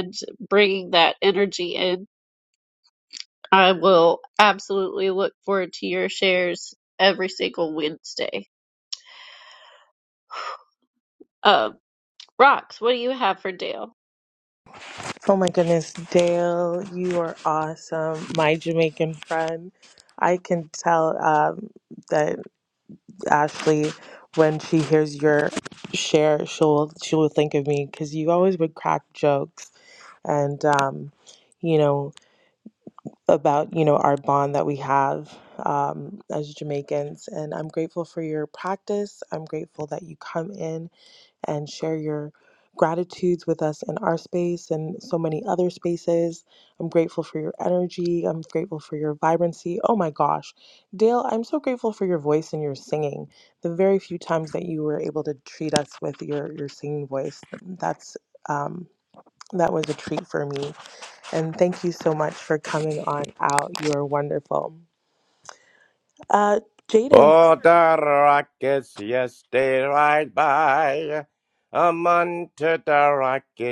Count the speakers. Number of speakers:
3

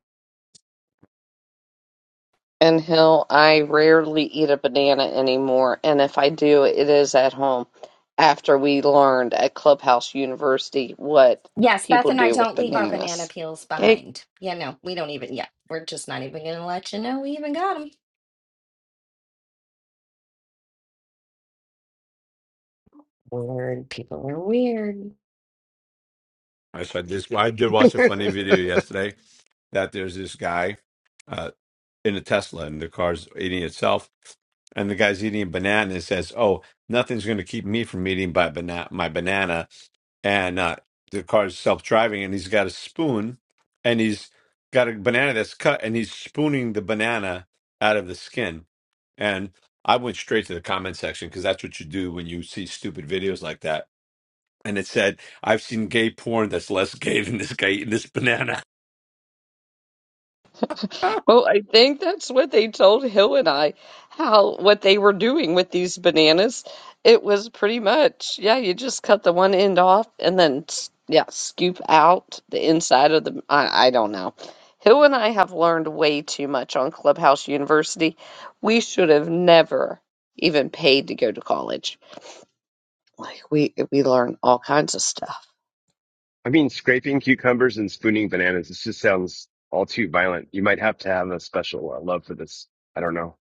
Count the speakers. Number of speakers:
4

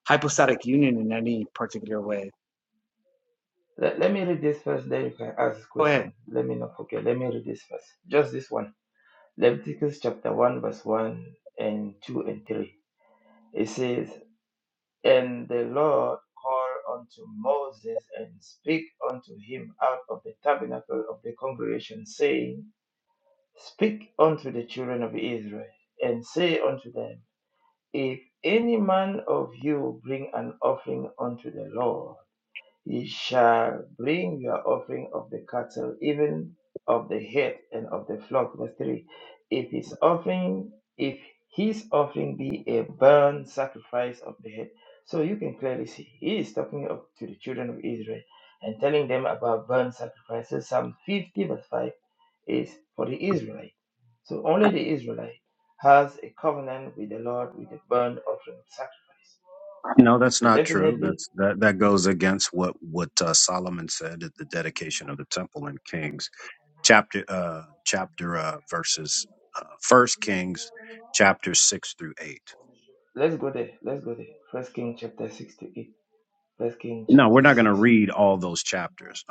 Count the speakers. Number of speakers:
3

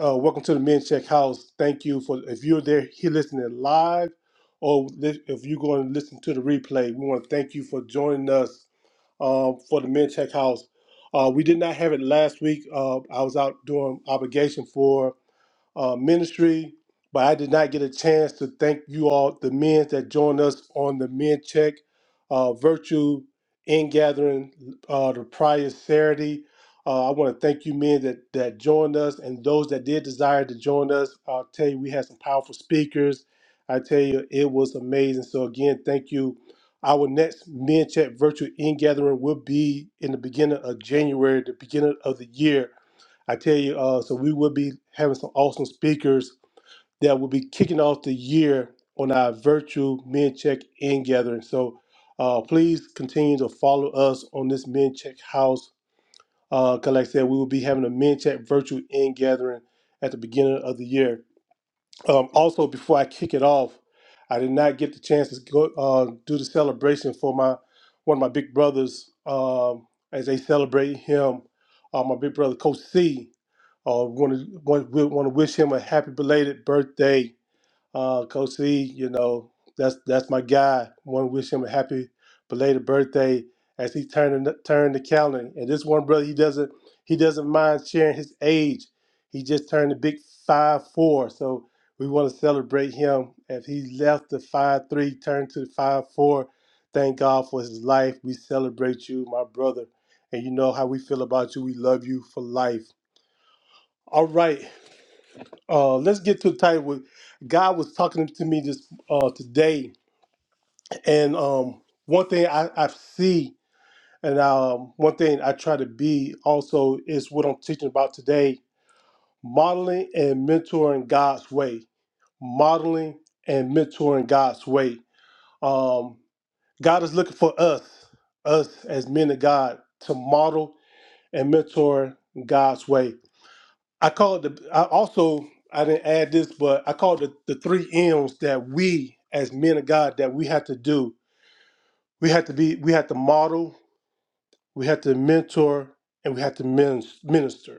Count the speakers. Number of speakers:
1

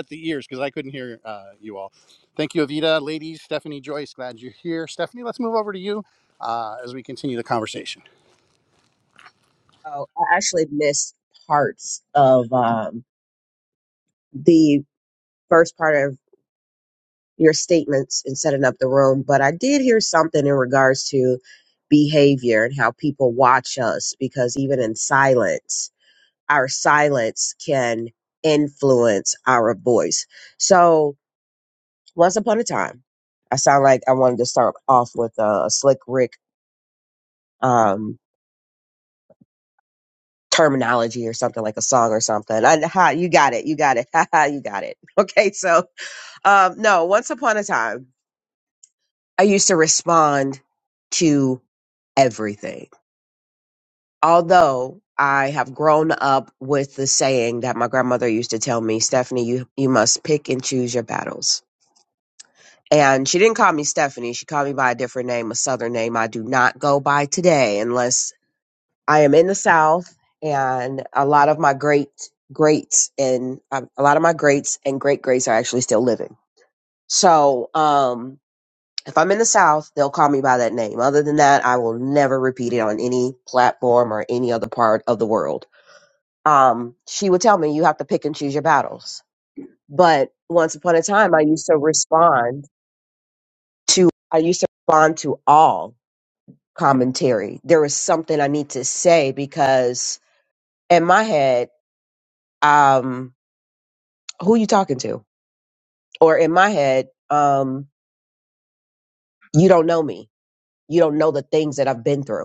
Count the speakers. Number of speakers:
2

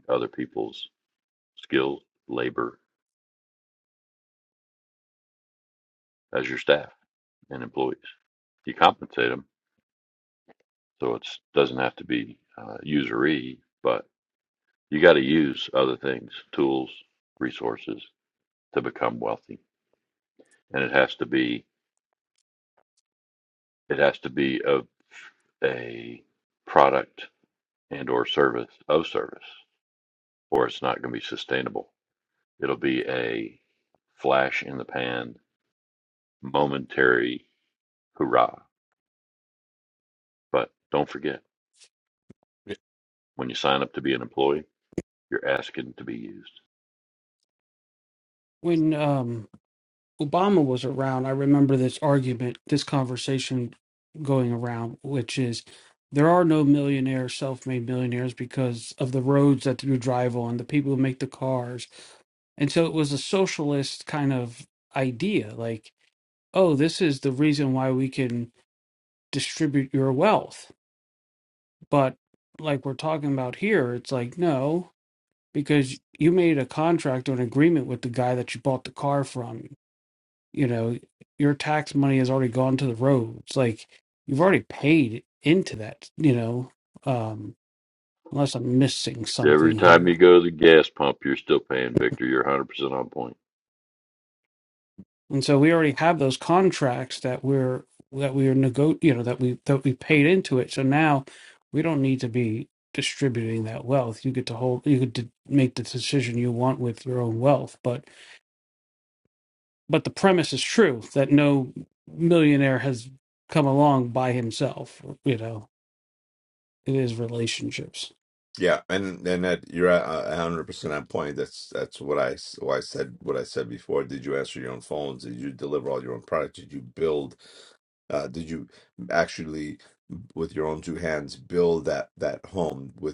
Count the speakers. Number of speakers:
3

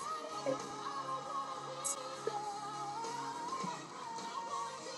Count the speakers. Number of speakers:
0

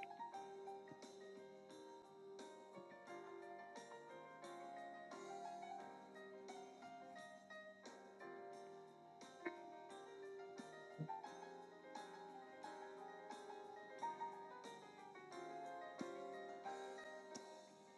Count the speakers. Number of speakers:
0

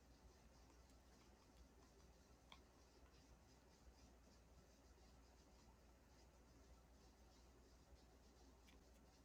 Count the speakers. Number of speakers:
0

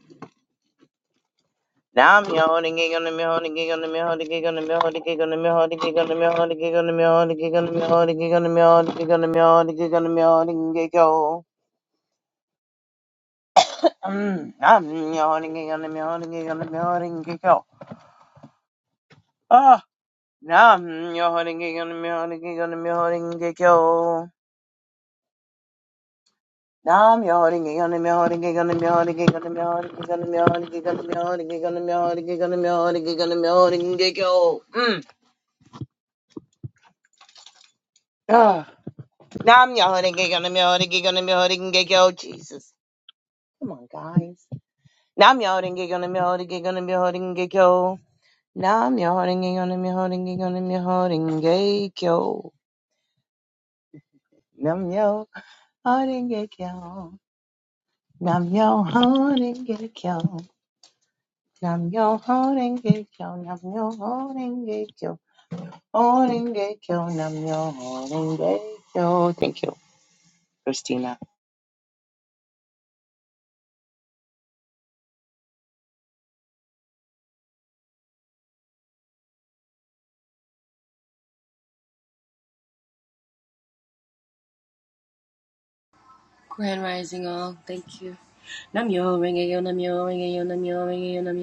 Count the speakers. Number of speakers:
2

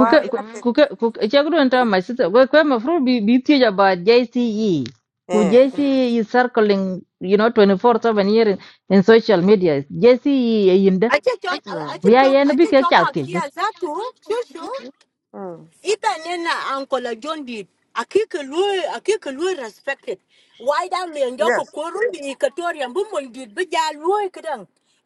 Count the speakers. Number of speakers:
3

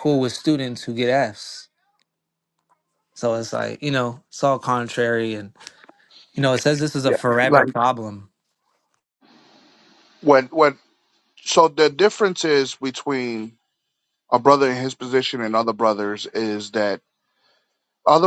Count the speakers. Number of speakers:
2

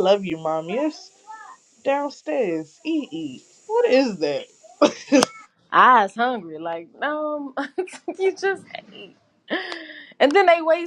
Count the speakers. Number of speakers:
2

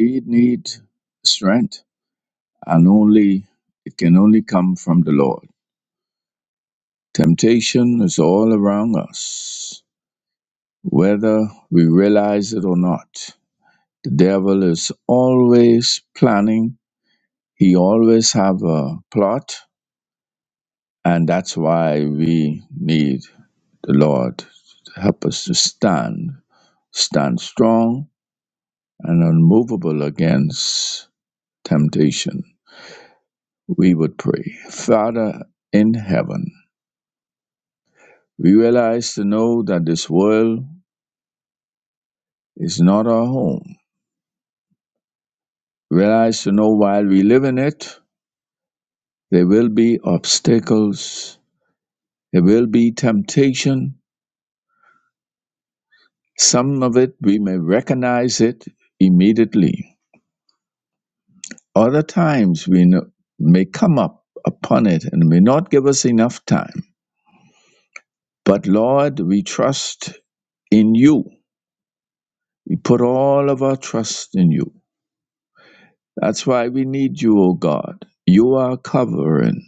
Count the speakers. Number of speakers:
1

